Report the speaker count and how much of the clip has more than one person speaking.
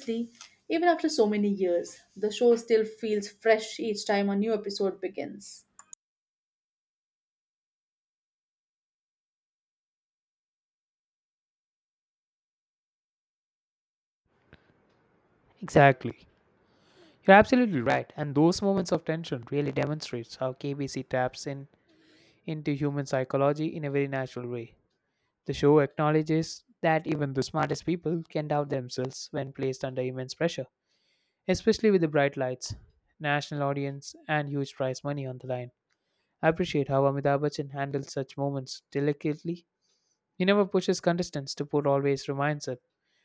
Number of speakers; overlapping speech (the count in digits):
2, no overlap